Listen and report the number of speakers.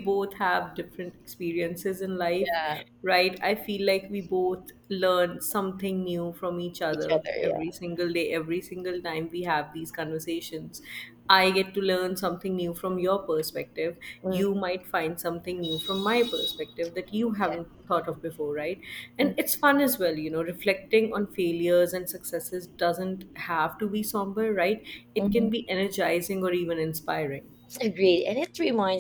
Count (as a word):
two